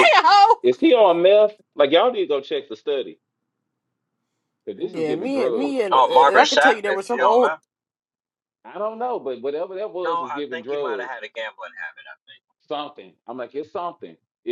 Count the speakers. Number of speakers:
3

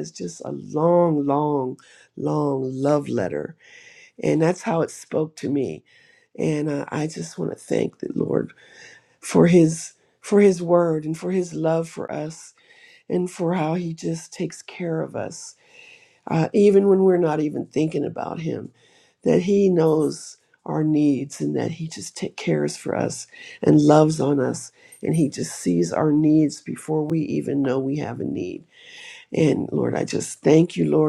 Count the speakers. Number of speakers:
1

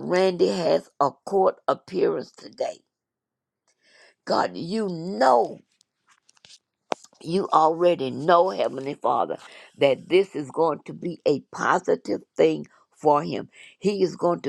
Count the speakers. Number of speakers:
1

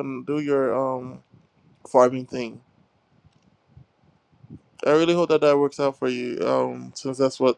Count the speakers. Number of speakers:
1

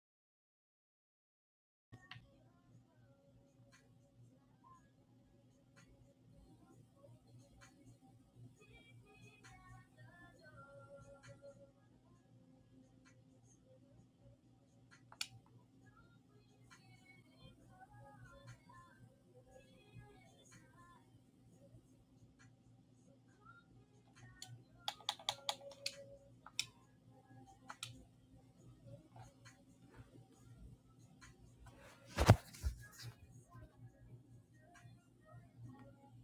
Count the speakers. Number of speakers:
0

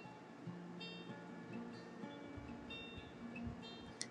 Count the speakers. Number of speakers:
0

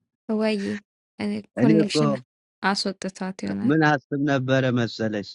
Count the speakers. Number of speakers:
2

